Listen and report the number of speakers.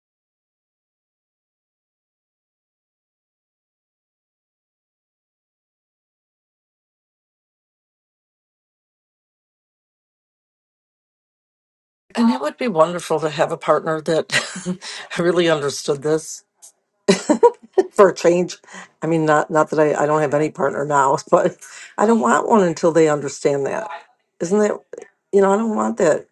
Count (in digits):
1